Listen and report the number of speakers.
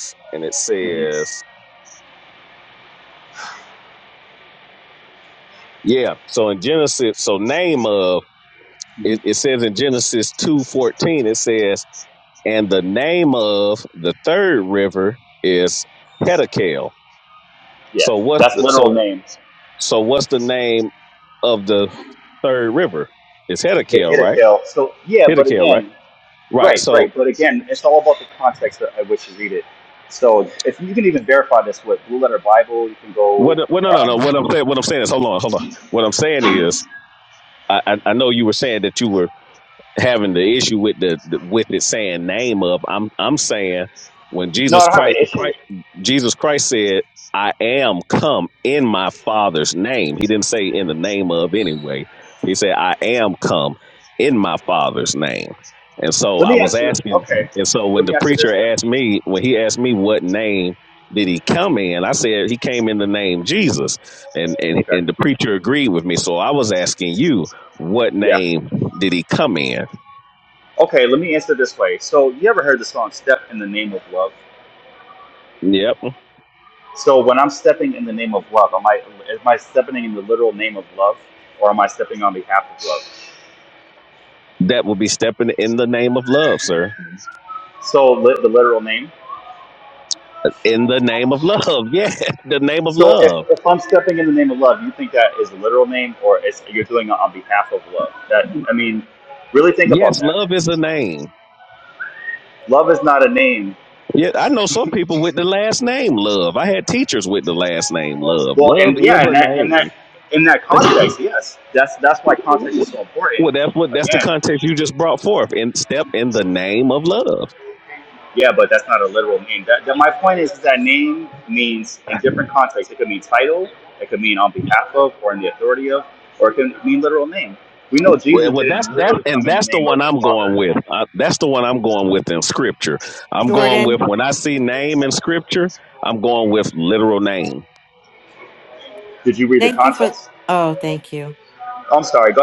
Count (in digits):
3